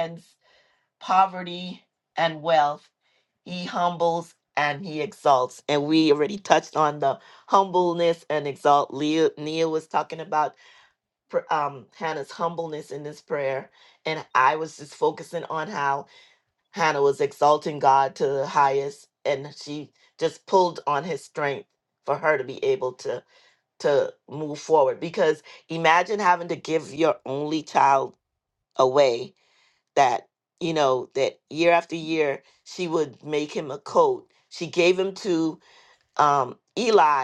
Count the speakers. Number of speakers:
1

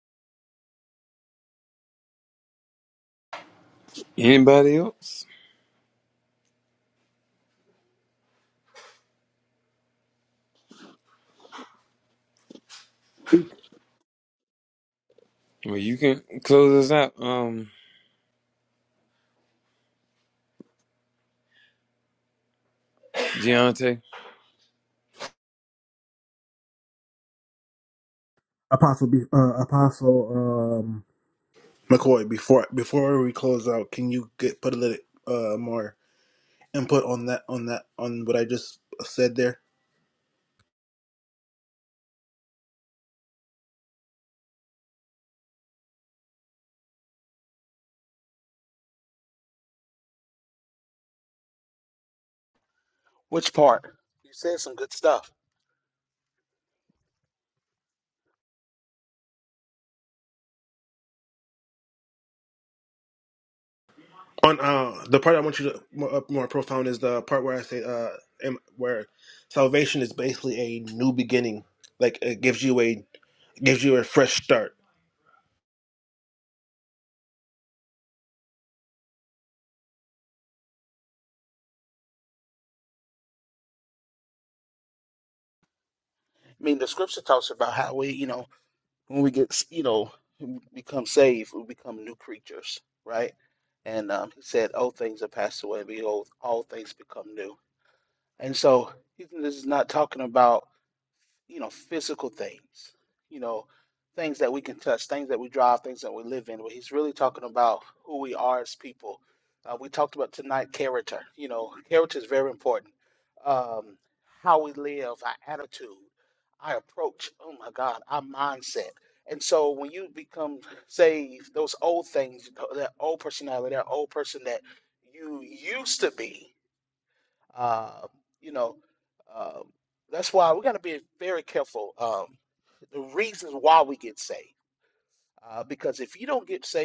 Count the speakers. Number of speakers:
3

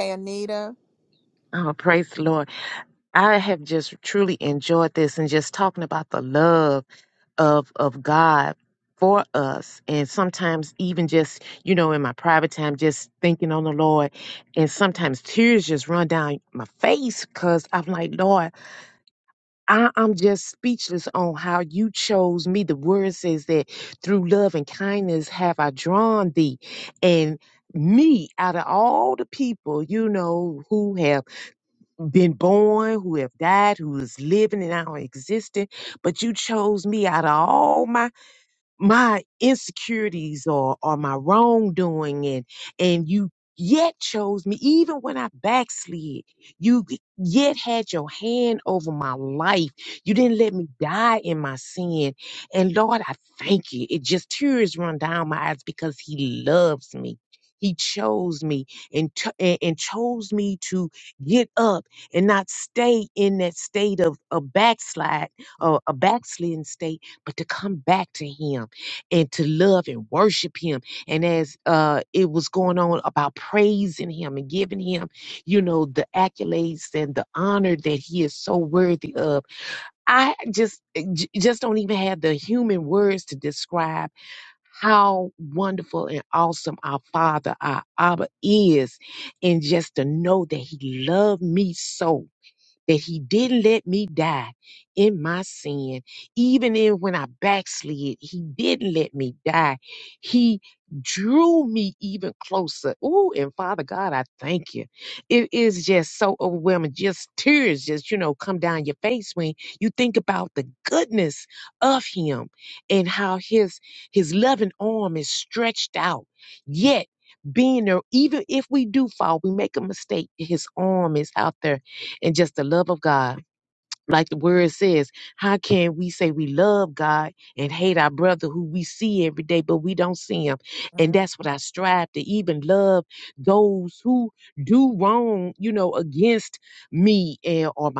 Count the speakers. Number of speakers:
2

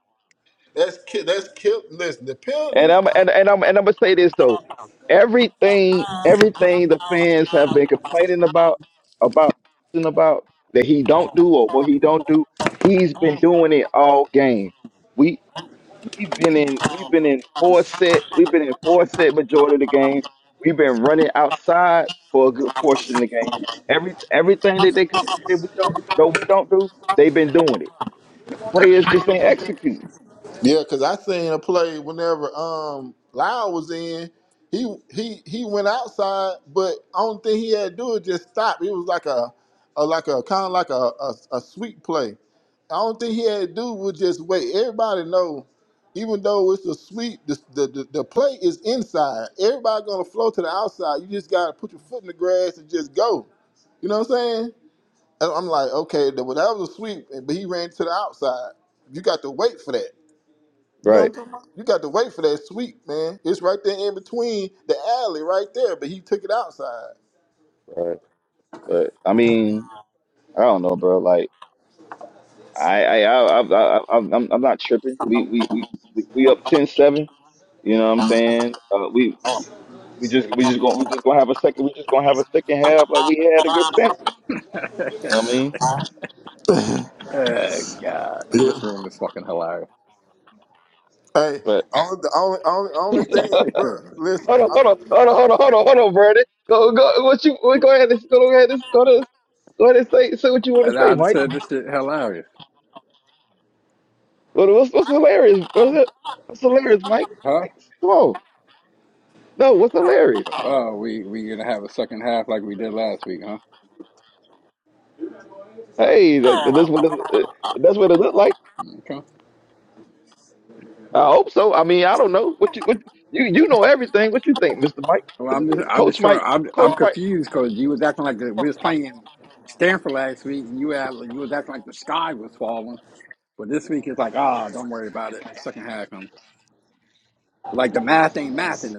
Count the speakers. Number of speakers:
3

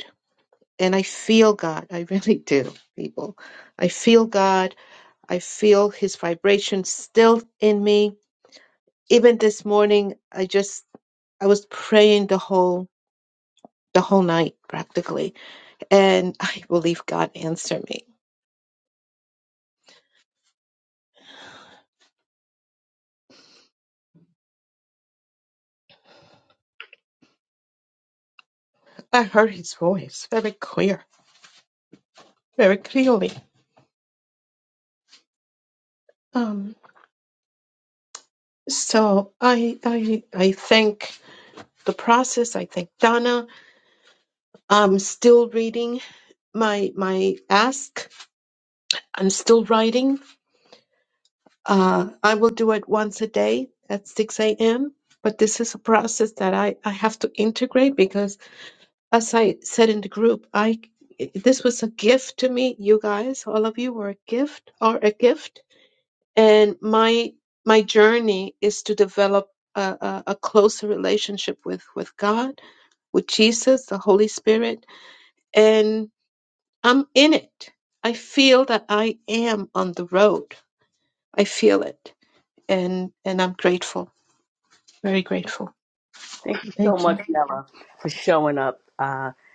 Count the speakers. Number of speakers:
2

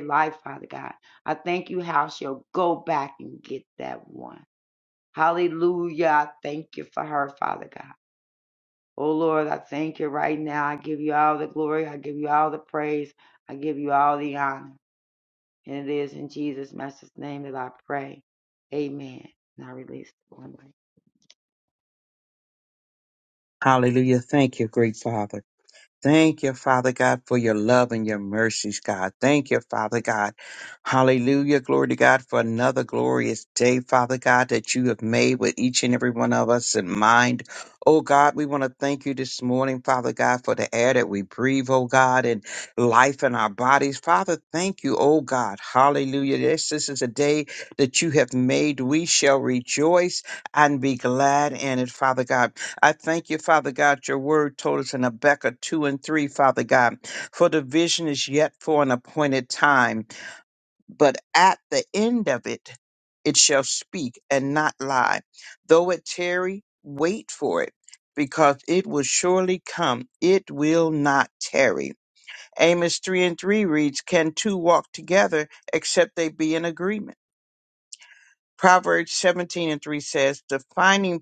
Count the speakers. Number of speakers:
2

